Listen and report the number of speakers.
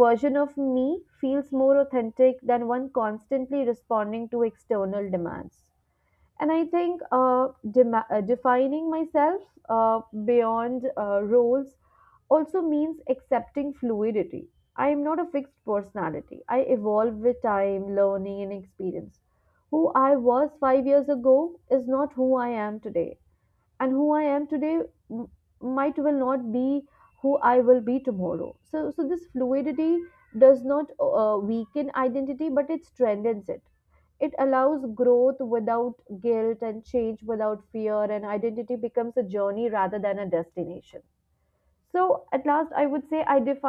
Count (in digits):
1